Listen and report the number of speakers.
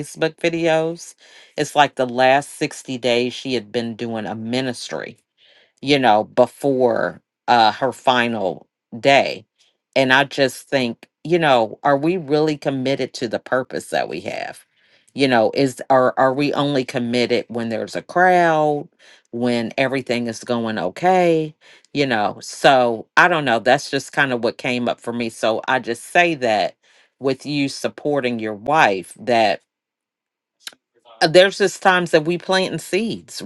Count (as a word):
one